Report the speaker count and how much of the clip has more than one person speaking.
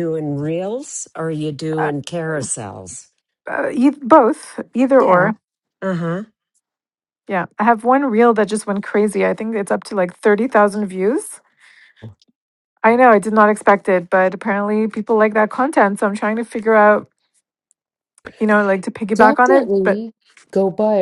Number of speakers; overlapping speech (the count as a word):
three, about 6%